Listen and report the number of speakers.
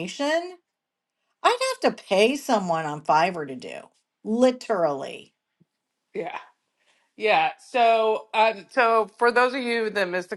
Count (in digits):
2